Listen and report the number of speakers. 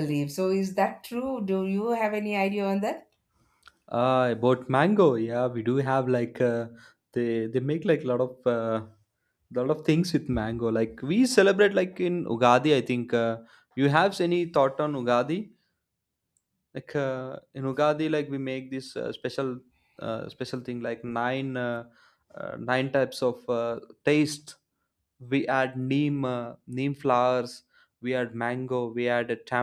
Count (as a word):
two